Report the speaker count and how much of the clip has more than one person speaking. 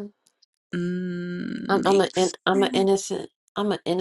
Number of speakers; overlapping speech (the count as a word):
two, about 29%